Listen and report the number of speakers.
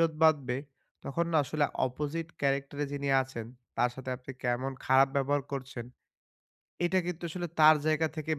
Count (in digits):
1